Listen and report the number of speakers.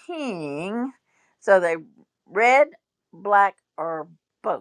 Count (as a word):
one